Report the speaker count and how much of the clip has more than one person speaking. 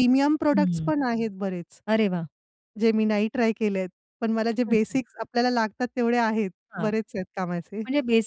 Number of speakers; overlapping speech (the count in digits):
2, about 6%